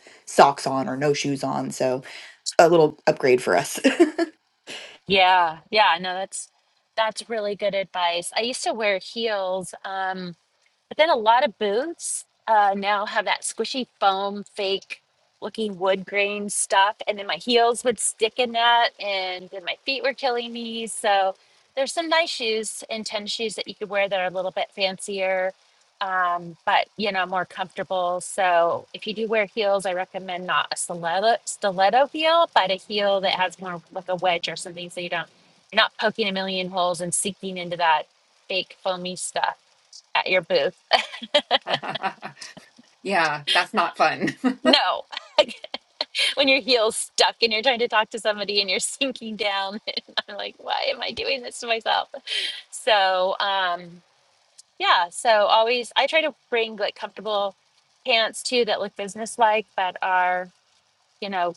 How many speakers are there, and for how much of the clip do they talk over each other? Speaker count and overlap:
three, no overlap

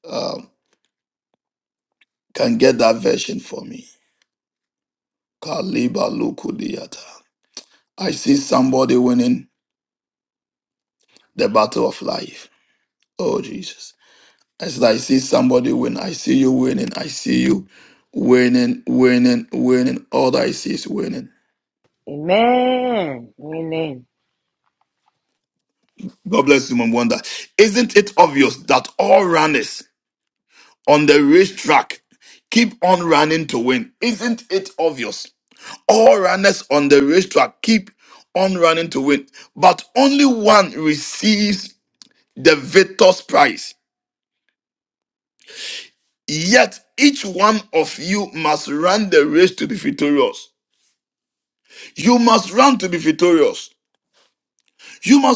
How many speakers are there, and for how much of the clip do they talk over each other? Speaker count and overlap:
two, no overlap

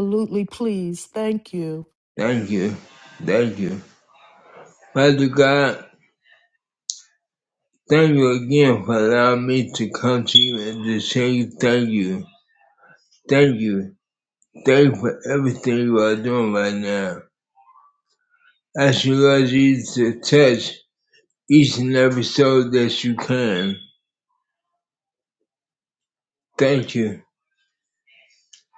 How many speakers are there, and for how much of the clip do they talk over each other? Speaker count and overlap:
two, no overlap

